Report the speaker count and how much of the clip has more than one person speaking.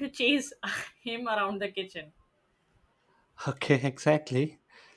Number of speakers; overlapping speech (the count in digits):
2, no overlap